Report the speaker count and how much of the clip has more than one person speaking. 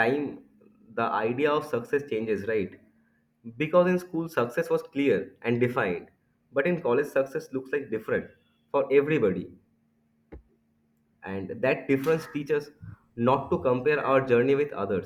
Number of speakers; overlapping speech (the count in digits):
1, no overlap